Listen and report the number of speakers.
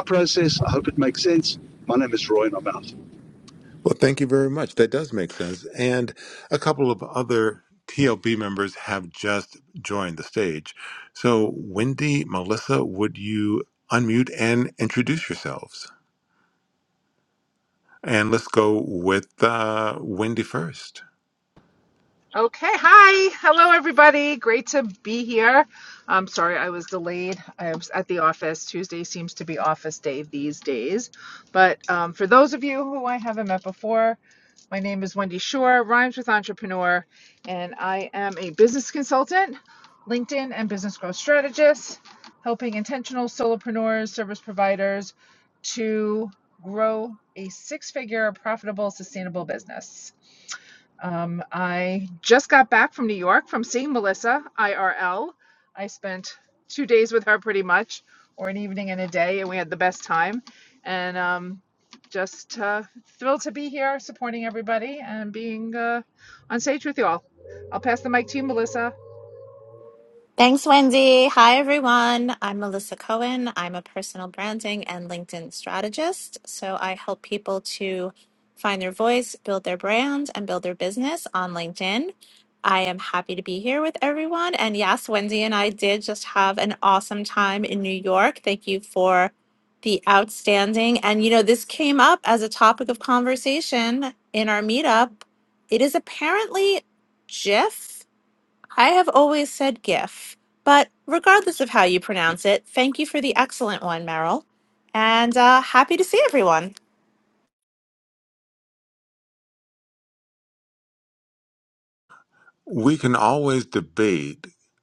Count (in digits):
4